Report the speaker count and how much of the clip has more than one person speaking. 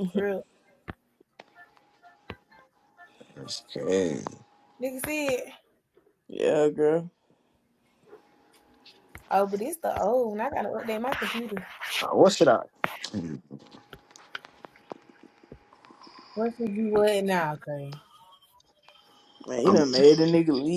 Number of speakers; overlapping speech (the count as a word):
three, about 1%